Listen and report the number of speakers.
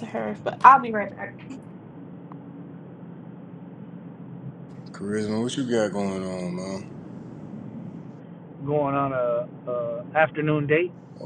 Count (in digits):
3